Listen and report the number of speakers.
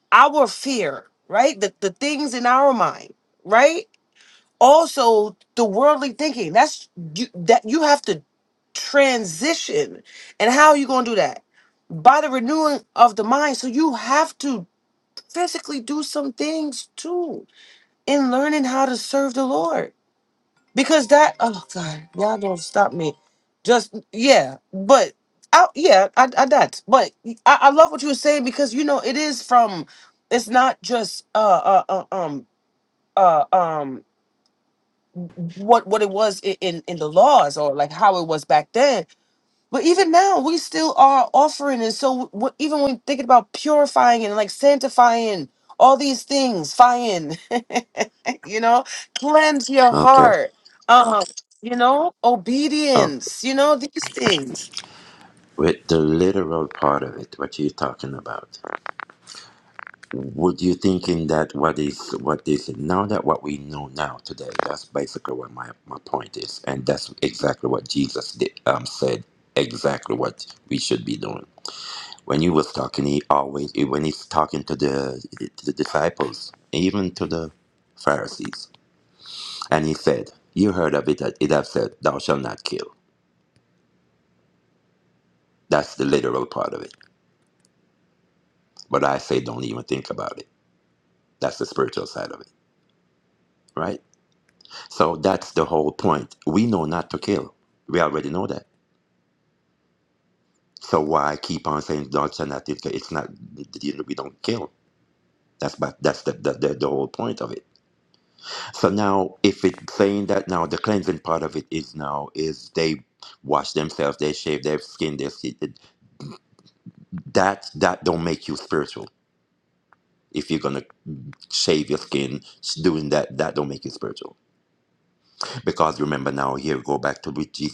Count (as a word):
two